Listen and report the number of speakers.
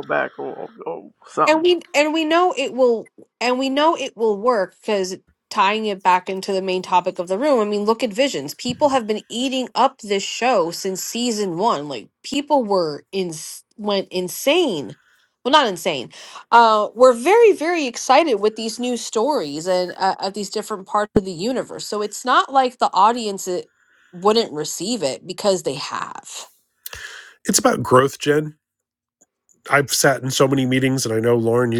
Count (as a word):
three